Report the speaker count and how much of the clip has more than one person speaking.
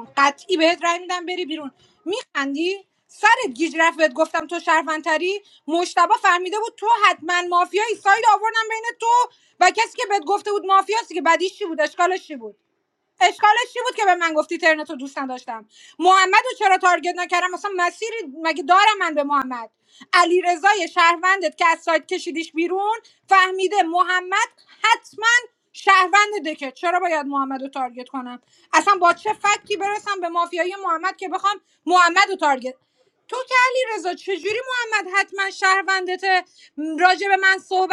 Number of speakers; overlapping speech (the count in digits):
1, no overlap